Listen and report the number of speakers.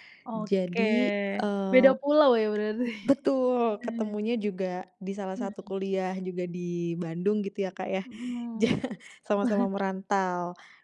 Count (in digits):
2